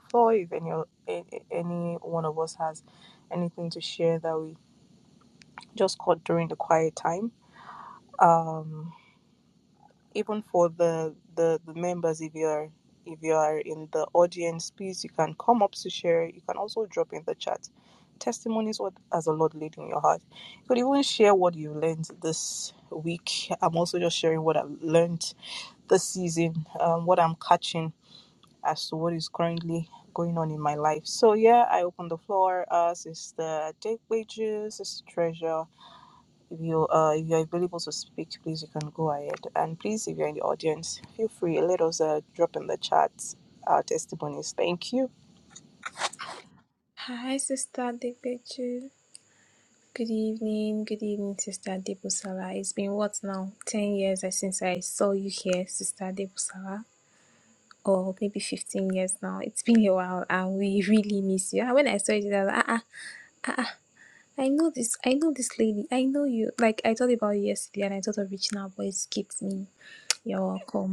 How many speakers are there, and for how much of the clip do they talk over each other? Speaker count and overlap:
two, no overlap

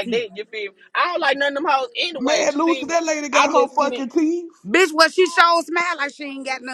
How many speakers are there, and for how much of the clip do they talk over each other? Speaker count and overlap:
three, about 20%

